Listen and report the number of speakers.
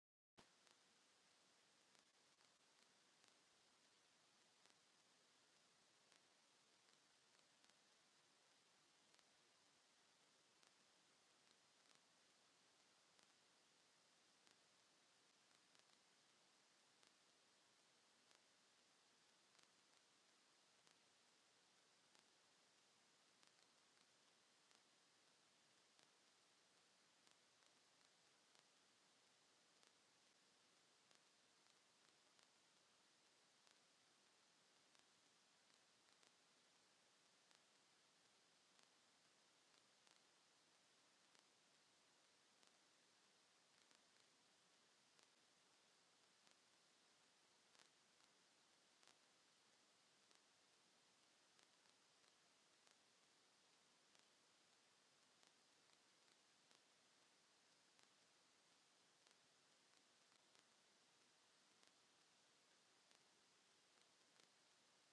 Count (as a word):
zero